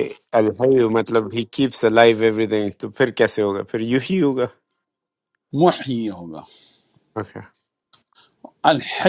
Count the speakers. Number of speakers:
2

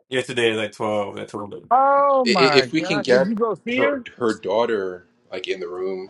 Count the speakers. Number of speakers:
3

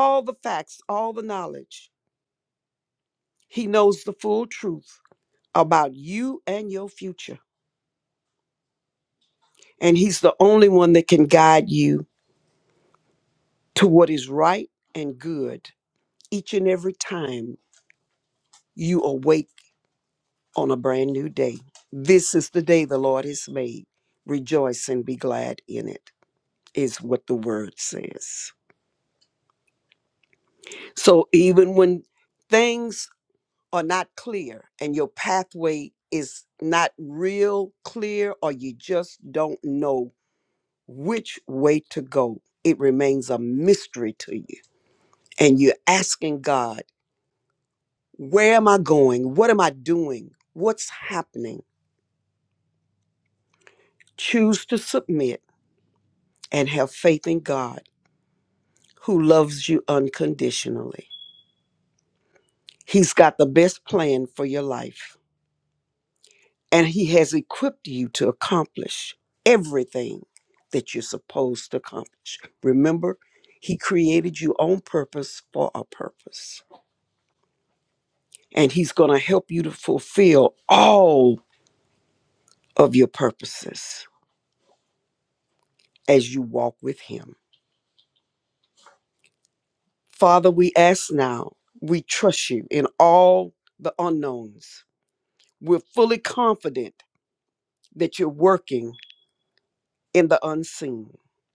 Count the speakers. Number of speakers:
1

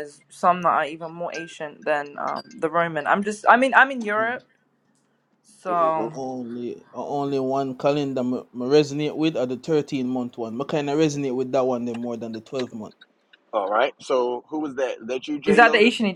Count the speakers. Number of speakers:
3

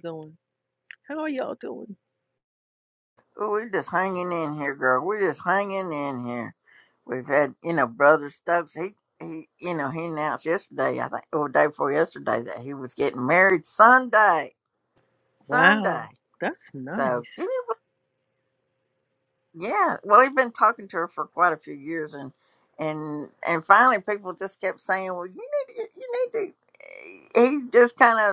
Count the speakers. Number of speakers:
2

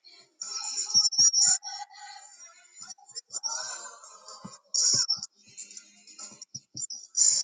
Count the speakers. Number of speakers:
0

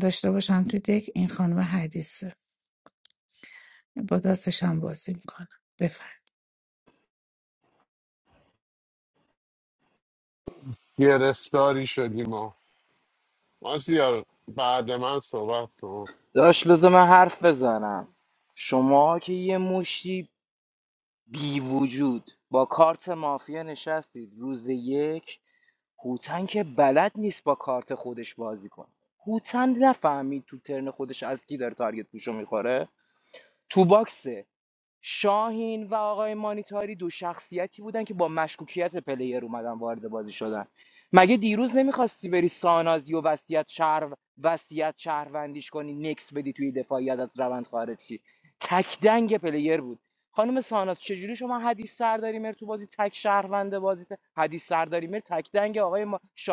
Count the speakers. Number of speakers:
3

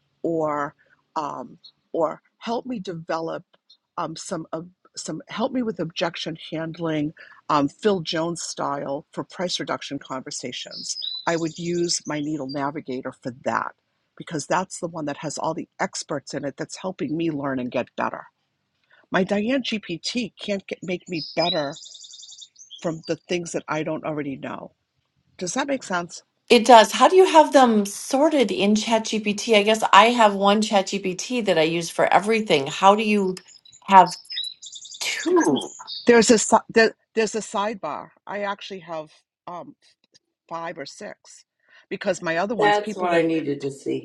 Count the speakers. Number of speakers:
3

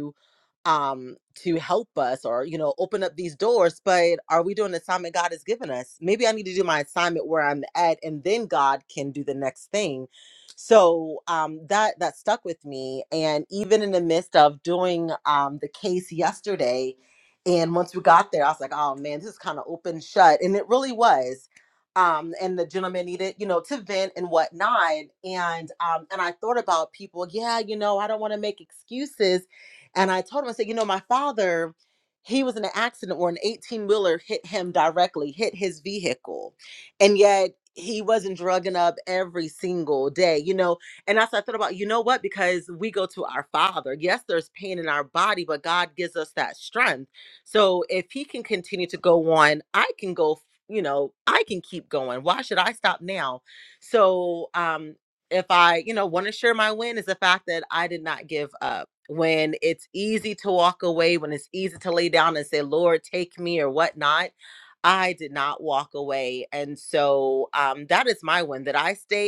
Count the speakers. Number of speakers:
1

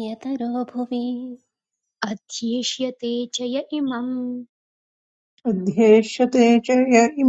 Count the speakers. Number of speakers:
3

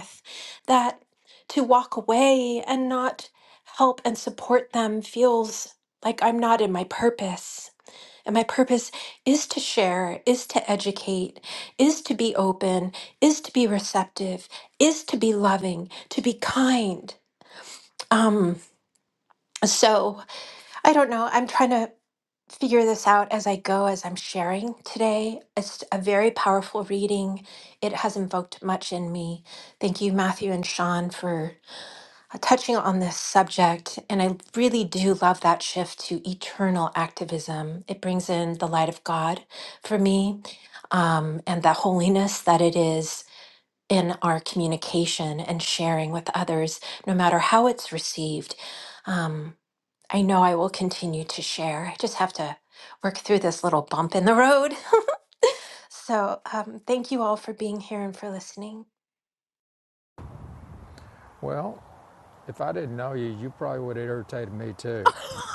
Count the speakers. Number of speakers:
2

